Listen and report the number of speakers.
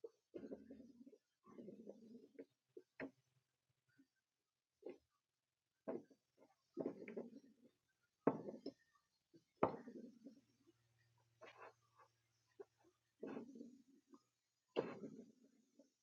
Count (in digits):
0